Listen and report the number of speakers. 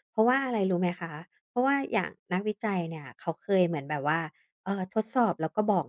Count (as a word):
one